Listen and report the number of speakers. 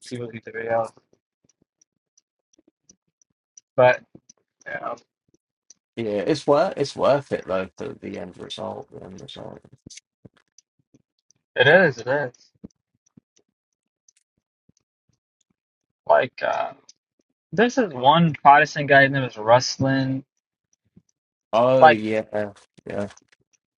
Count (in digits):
2